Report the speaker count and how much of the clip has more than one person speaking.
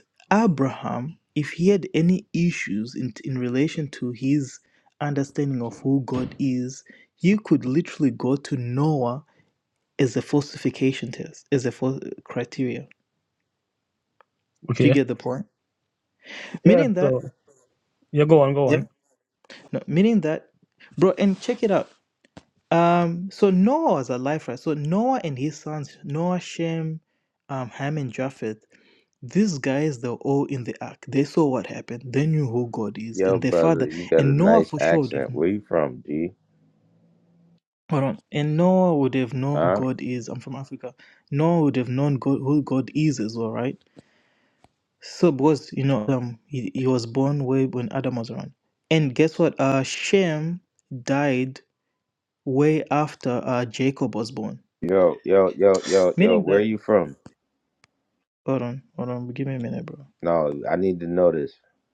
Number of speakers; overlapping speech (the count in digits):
3, about 6%